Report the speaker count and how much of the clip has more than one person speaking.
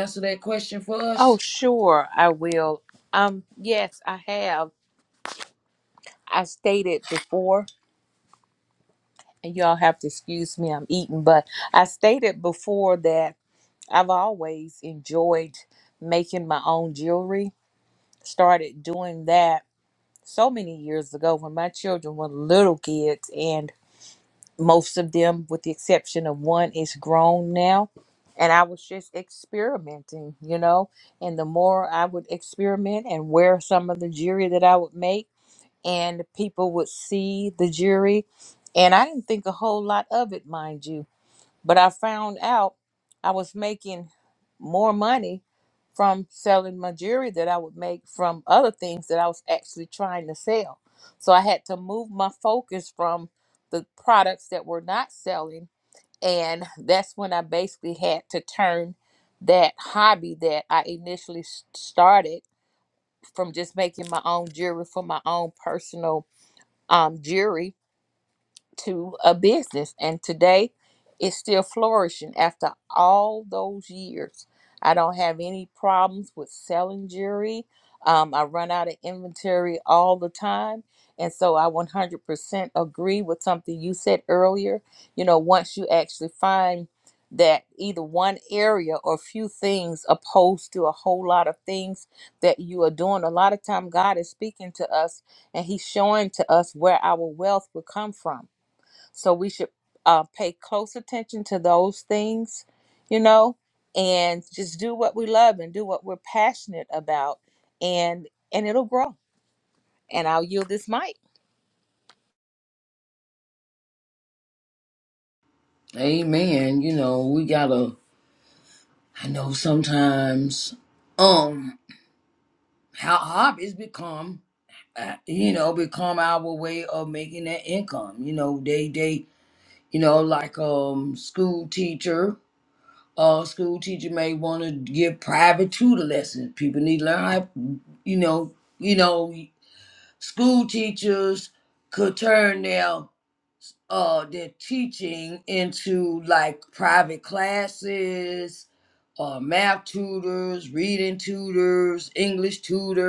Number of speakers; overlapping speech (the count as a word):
two, under 1%